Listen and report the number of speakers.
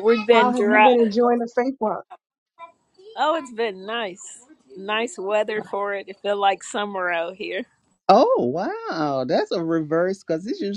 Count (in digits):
3